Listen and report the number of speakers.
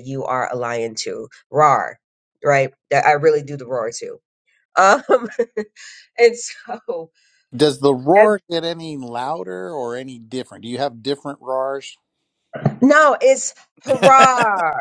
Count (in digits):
2